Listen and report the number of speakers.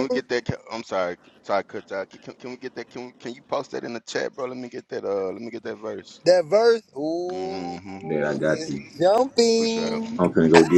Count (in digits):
3